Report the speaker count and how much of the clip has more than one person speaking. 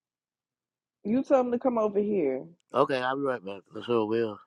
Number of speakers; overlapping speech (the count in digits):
2, no overlap